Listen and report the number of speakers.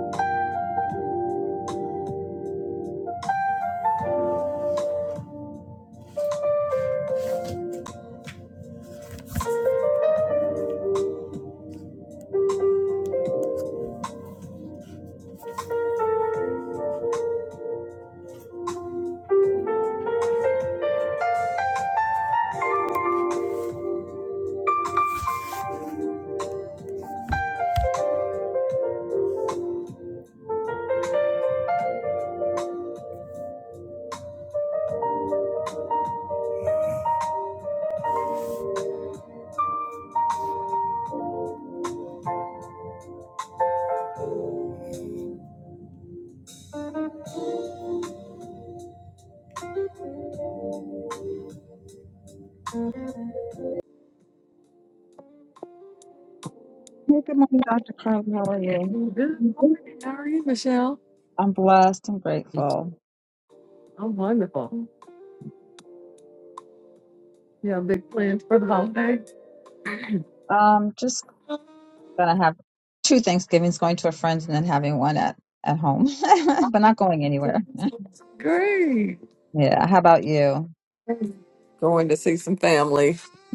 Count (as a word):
two